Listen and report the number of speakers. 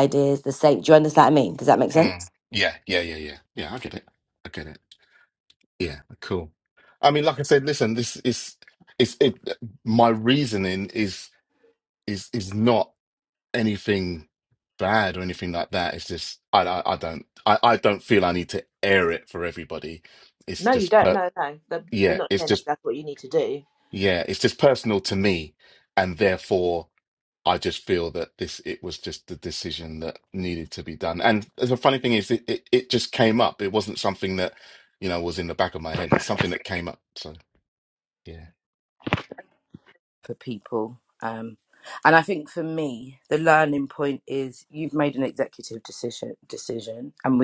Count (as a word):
four